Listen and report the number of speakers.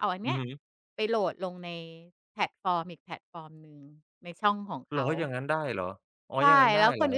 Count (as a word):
two